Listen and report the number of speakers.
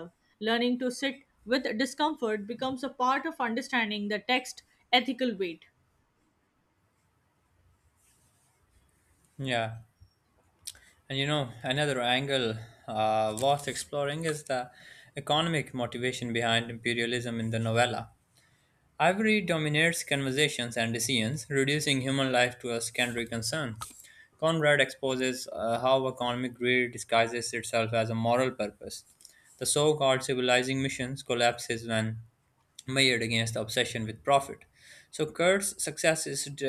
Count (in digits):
2